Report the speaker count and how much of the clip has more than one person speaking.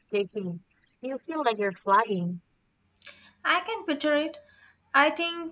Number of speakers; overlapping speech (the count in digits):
2, no overlap